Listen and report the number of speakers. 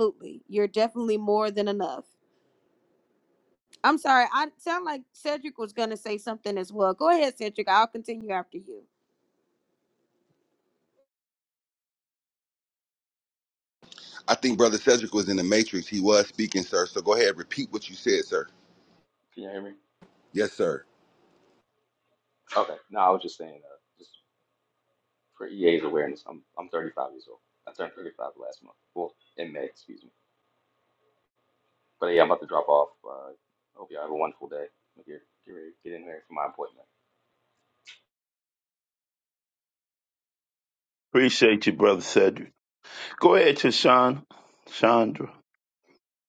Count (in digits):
4